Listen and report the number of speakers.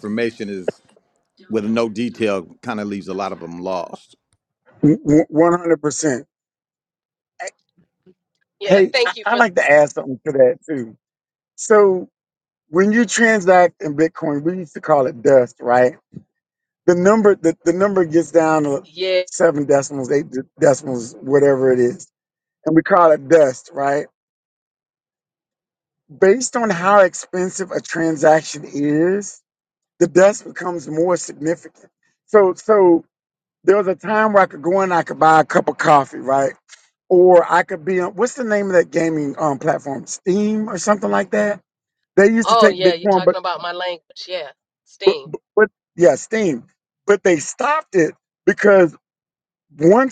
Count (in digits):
3